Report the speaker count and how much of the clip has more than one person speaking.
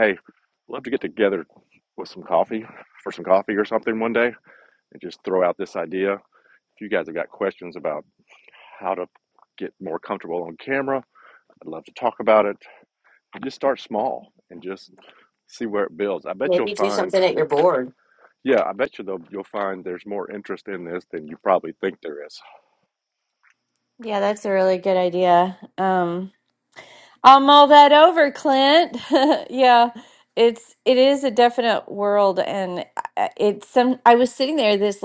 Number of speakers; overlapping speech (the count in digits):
3, about 2%